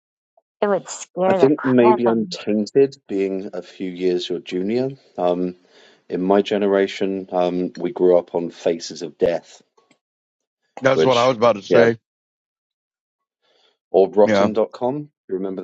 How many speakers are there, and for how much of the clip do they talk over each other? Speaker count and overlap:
three, about 11%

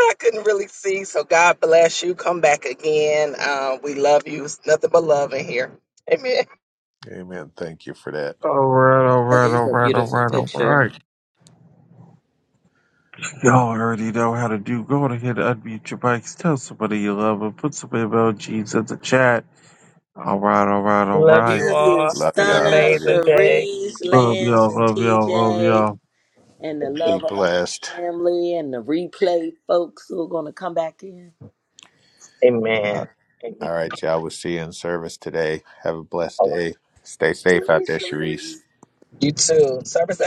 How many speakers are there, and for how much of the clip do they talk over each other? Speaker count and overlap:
four, about 19%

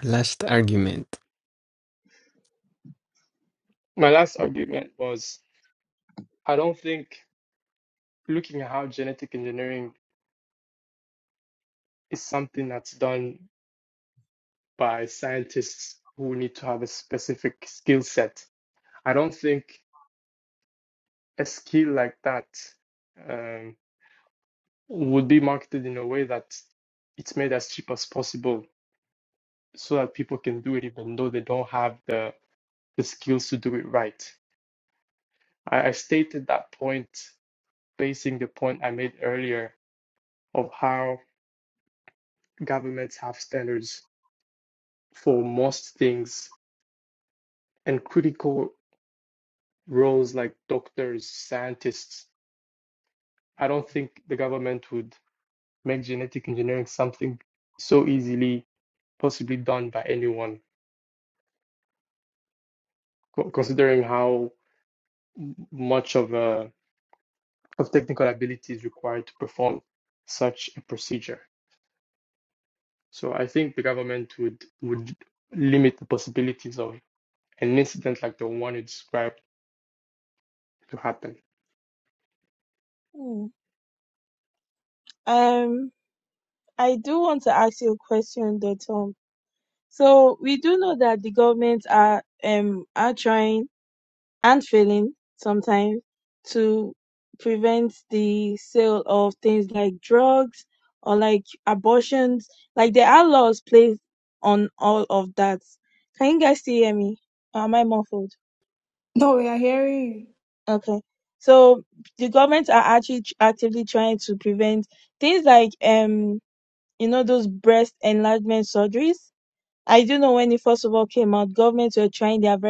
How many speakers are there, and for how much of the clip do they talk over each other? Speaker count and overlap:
four, no overlap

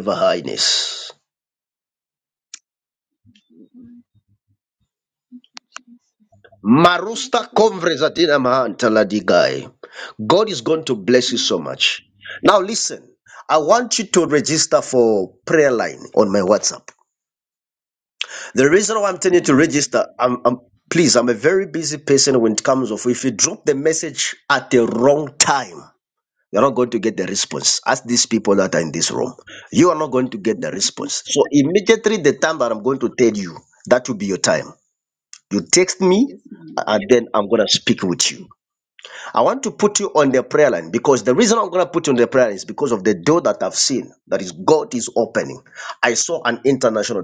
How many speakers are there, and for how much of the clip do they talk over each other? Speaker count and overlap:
two, about 5%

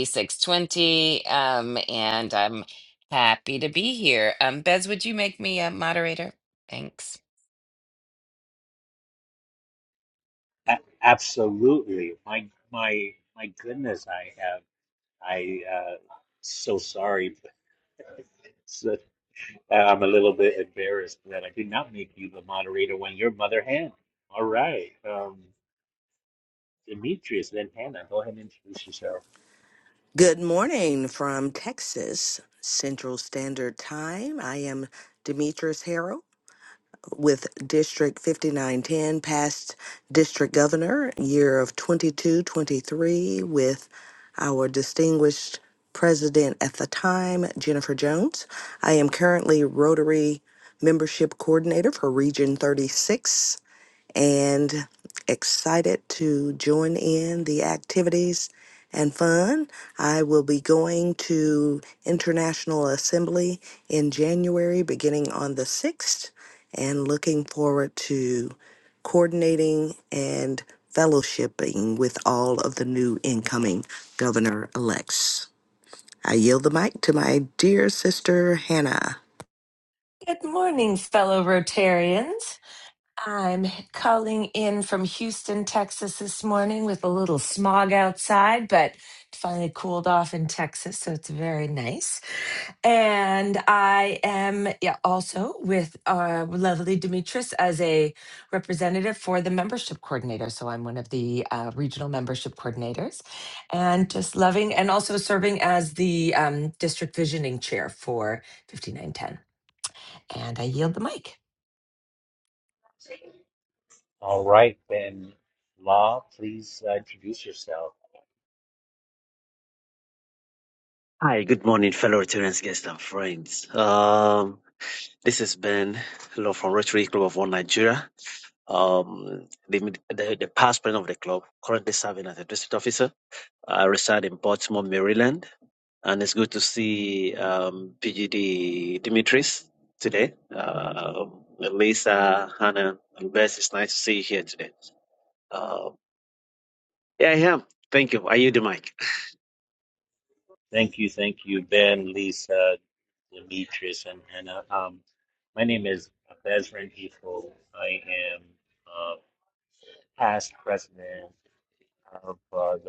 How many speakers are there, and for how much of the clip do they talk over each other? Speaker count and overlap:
five, no overlap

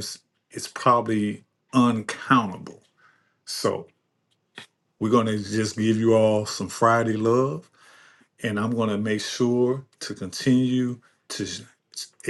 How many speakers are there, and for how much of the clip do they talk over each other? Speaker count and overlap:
one, no overlap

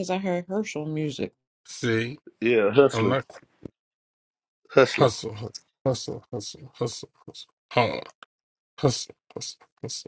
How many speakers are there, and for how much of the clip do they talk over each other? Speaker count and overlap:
three, about 4%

